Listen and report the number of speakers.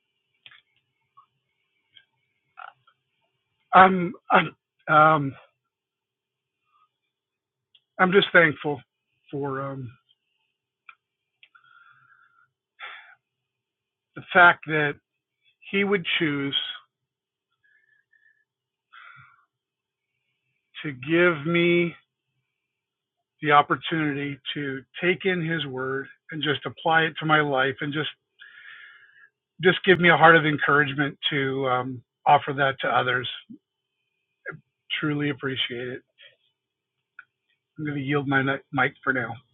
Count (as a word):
one